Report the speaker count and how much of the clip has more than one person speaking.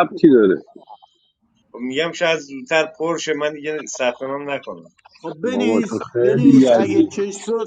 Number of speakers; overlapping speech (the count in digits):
3, about 23%